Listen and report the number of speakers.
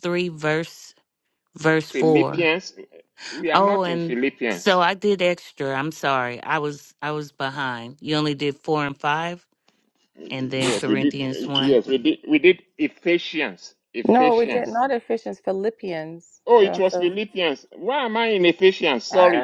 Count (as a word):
three